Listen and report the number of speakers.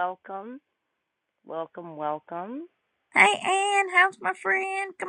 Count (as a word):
two